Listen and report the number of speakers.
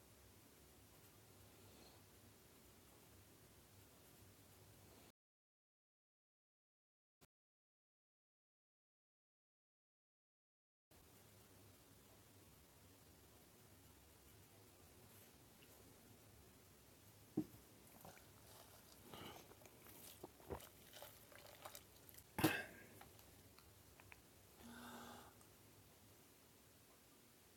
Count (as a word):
zero